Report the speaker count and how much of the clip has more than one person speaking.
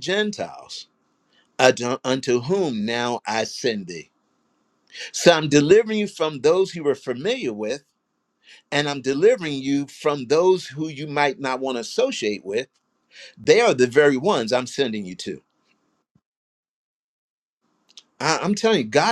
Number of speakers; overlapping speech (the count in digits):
1, no overlap